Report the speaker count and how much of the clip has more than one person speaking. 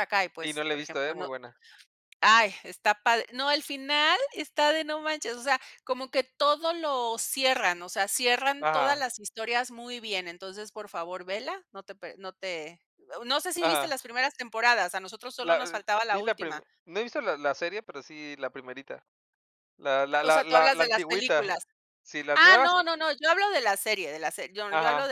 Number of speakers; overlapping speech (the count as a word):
two, about 18%